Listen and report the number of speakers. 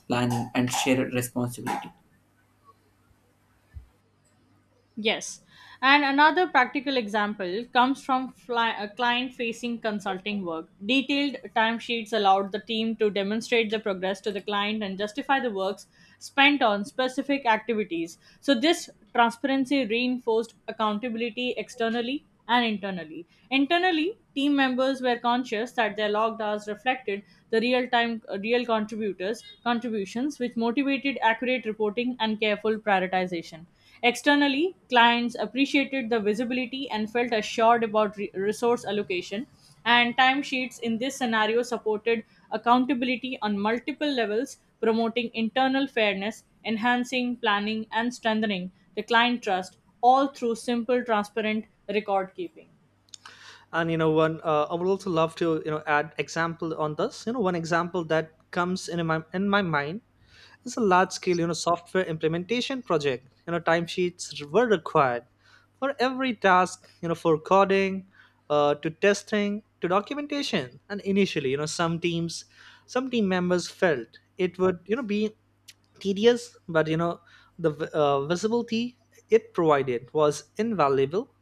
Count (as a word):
three